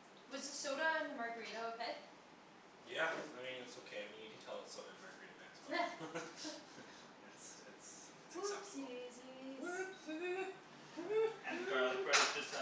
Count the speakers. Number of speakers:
4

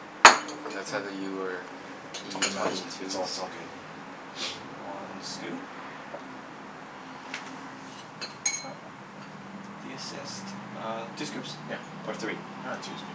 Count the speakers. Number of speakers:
3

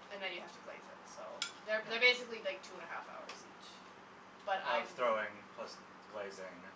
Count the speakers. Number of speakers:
2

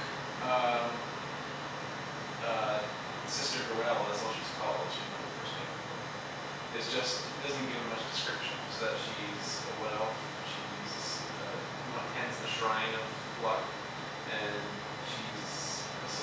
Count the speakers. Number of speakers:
1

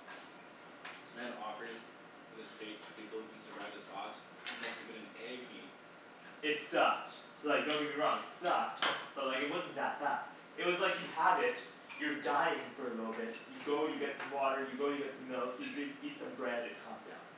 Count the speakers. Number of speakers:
2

